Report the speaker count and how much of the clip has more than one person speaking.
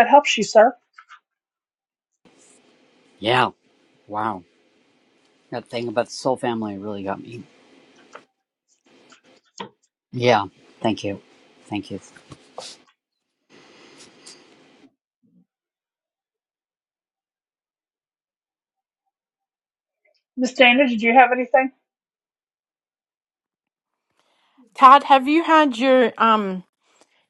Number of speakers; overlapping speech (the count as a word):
three, no overlap